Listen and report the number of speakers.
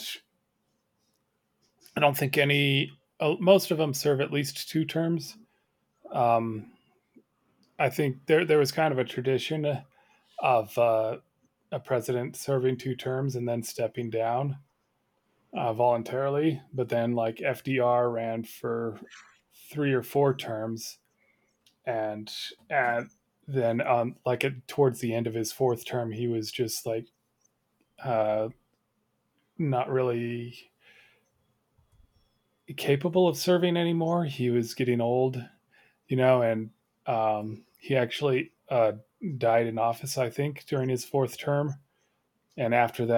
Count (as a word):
one